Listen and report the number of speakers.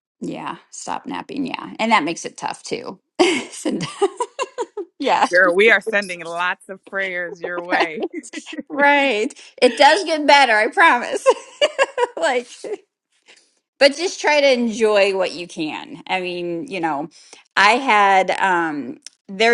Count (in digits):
2